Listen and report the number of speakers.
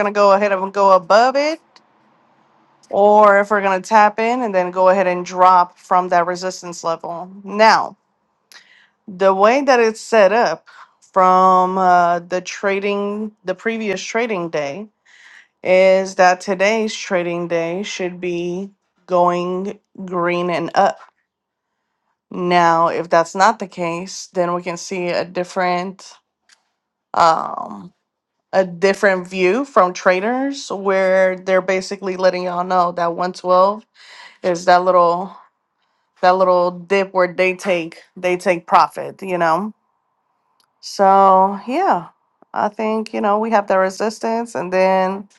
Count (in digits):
1